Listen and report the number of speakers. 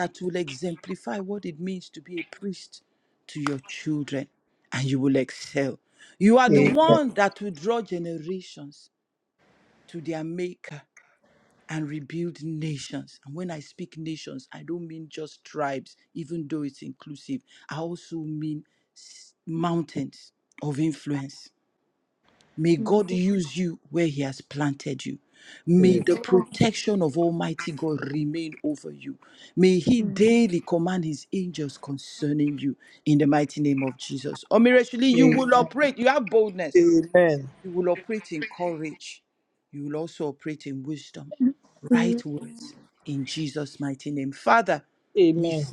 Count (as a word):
two